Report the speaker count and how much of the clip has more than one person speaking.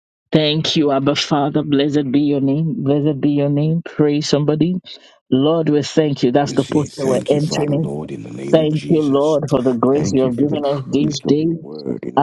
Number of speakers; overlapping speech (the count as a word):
two, about 32%